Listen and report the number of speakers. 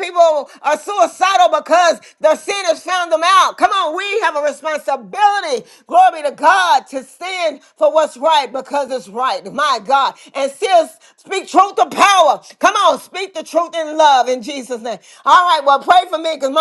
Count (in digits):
1